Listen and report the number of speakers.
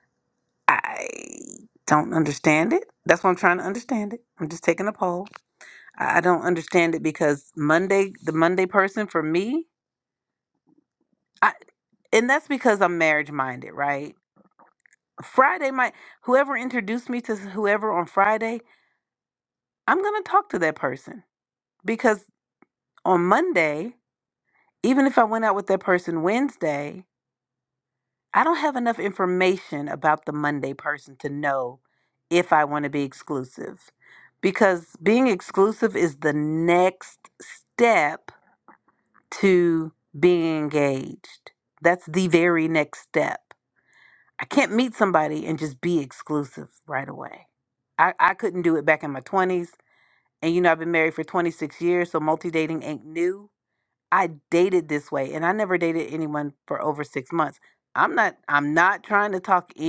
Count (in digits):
1